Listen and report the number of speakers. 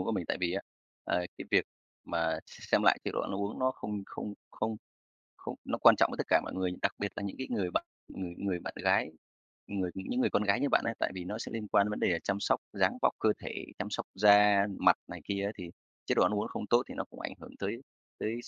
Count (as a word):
one